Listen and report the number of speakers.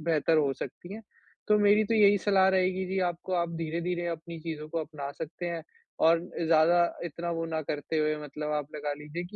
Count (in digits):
1